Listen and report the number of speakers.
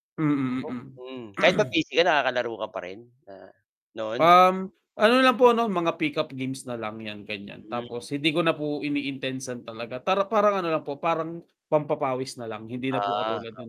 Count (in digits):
2